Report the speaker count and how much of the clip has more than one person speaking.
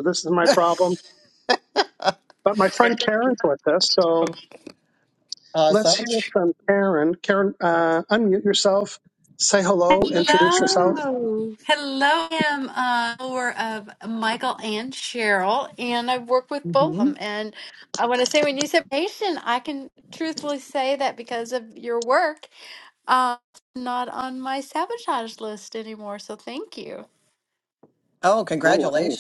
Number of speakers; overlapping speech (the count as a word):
three, about 8%